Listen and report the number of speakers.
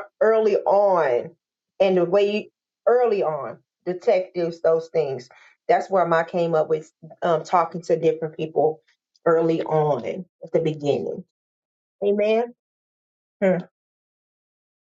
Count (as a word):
one